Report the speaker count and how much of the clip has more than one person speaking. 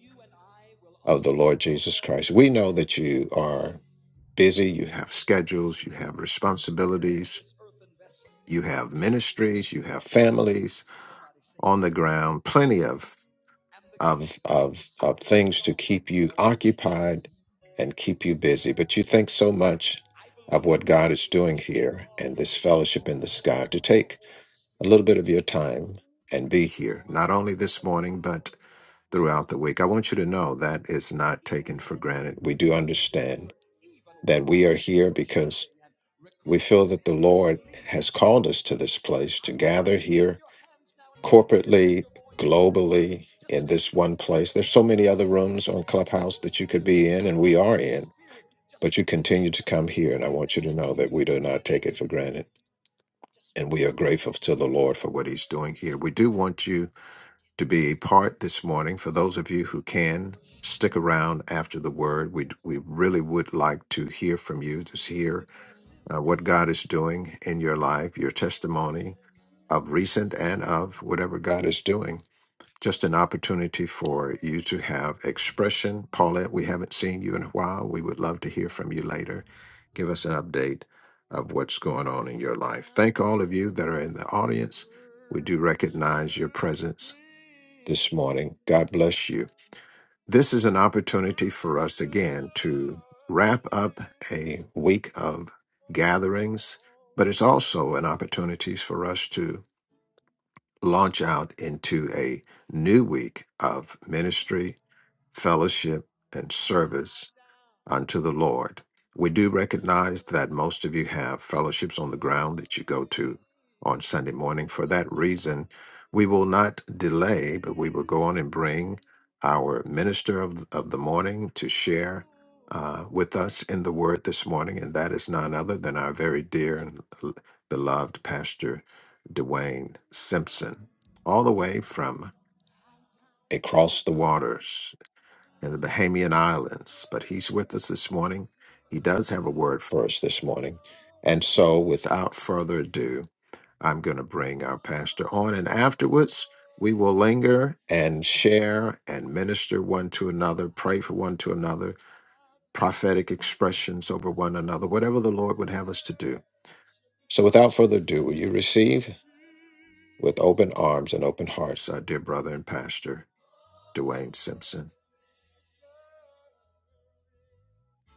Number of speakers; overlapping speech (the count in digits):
1, no overlap